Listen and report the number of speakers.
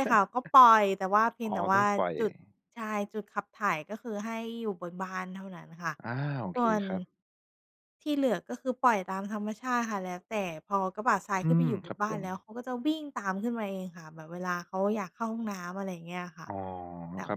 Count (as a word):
two